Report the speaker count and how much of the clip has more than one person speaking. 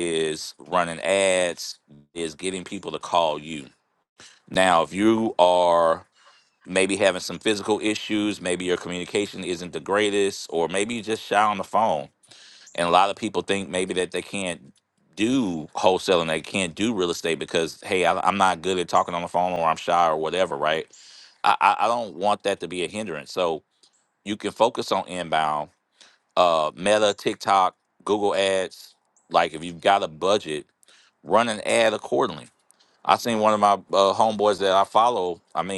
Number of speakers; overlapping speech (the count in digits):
1, no overlap